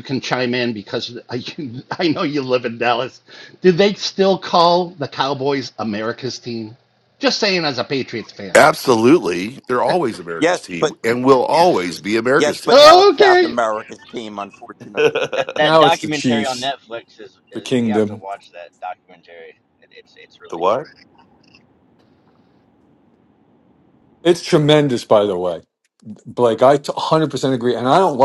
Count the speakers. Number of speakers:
5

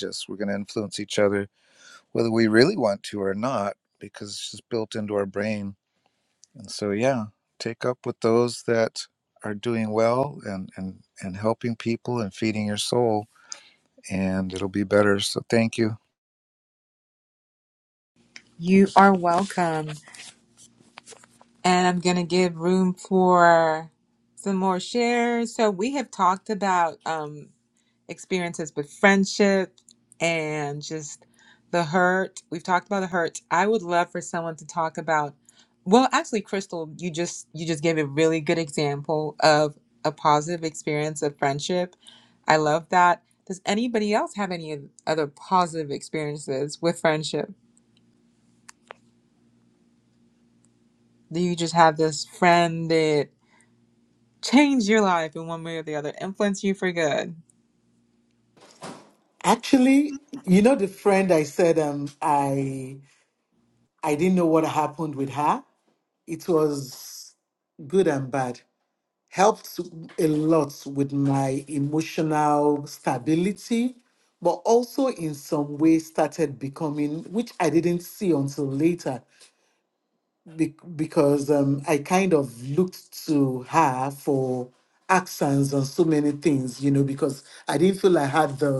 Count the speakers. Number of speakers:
3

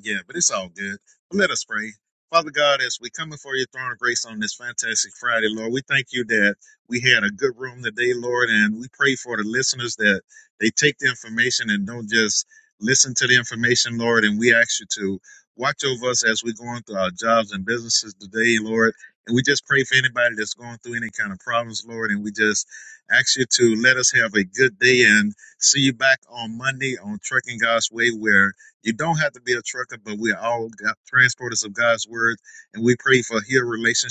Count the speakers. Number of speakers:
1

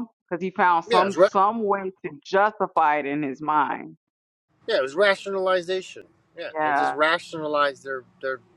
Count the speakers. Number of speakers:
2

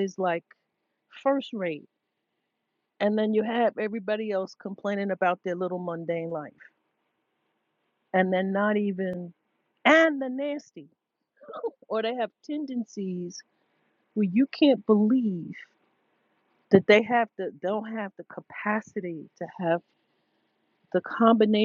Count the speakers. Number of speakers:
1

